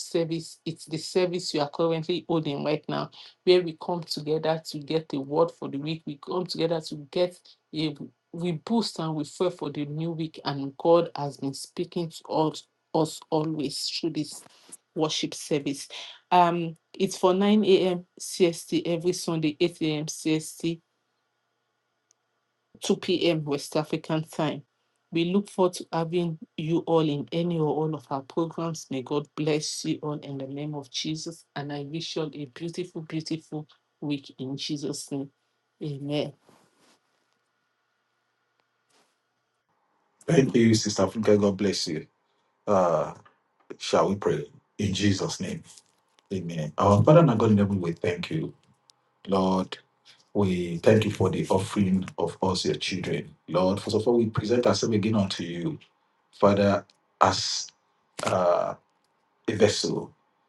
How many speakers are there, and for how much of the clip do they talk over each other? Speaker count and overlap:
2, no overlap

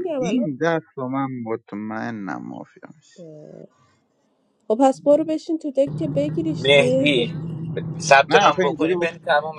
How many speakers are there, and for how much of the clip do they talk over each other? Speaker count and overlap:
3, about 19%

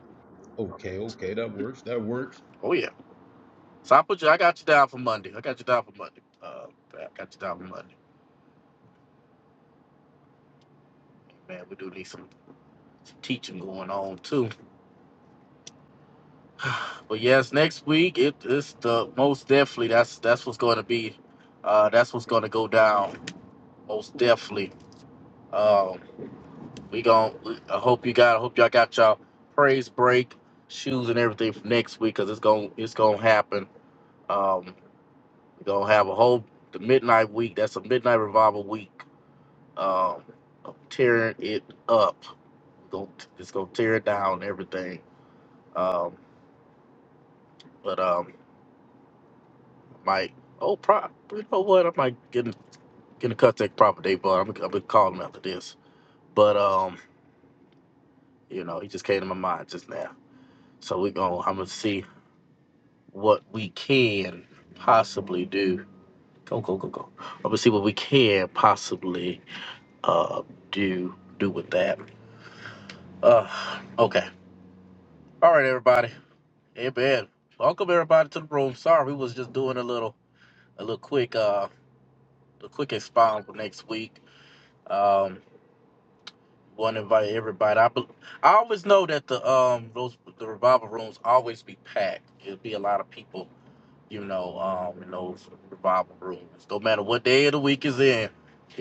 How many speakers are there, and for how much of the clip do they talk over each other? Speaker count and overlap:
2, no overlap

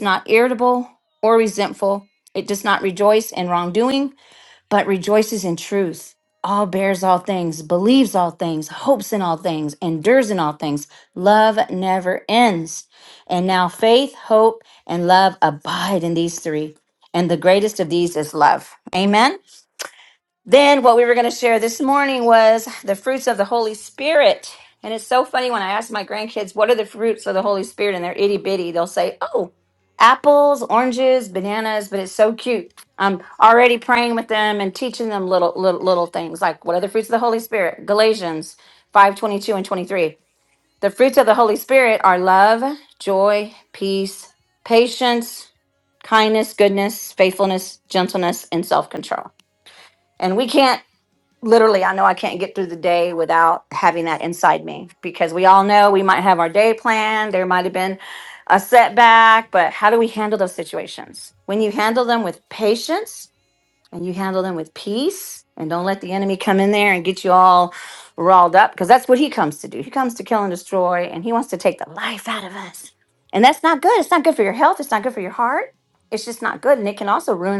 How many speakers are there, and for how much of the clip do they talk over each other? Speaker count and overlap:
1, no overlap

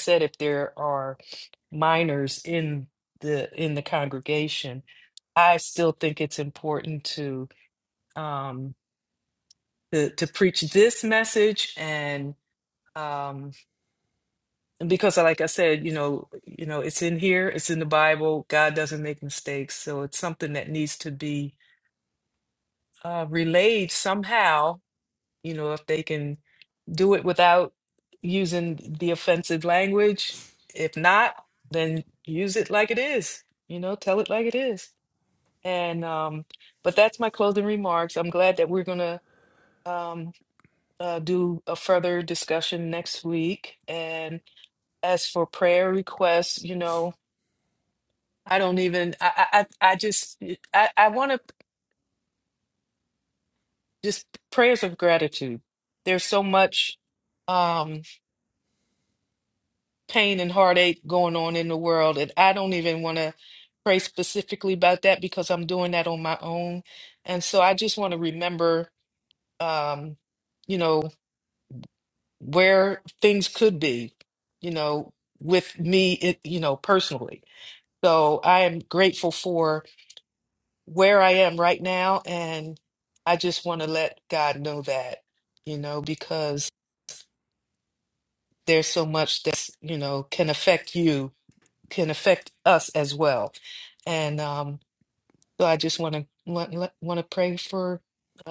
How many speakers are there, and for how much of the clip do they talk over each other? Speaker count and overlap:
1, no overlap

